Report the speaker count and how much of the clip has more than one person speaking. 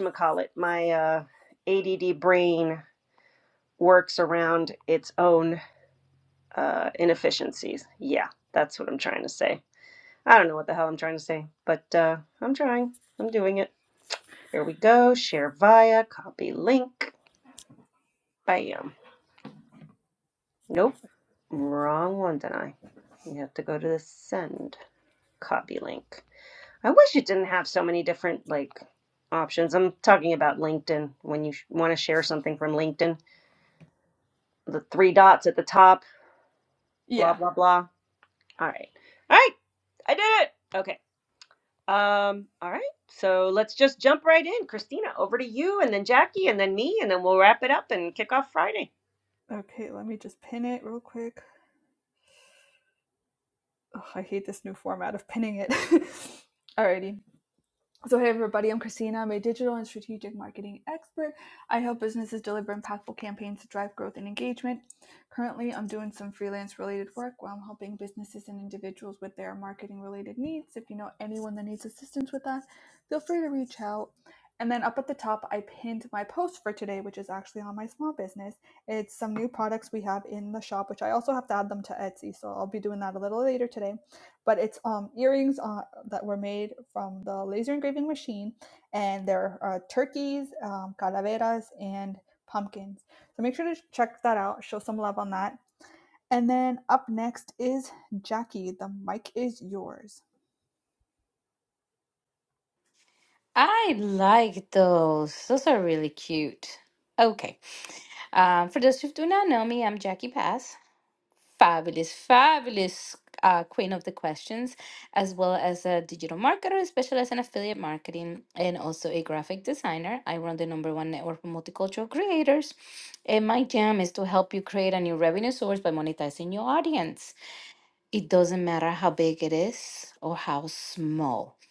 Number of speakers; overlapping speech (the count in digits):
3, under 1%